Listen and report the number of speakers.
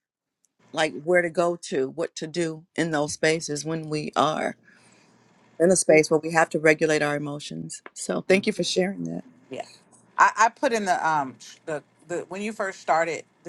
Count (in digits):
2